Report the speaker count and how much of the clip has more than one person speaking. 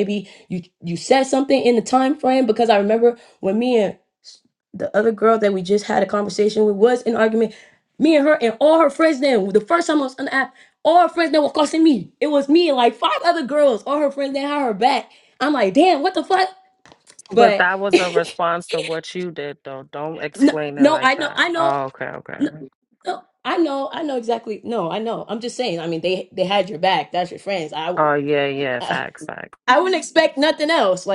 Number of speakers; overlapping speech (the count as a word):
two, about 7%